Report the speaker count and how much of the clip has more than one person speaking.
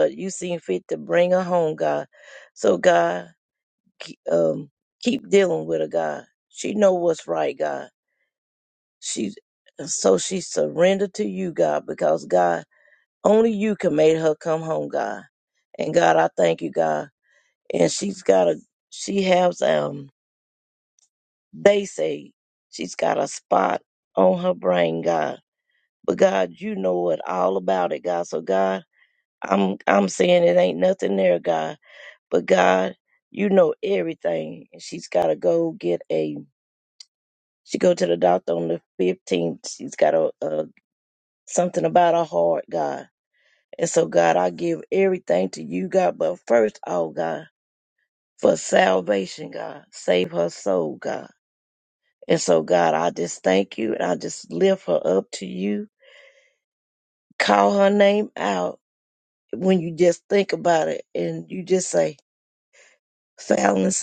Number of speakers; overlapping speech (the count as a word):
one, no overlap